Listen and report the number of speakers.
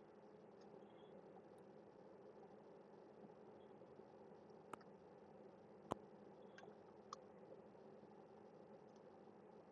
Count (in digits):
0